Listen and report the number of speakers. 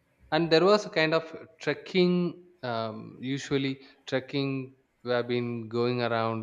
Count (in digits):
1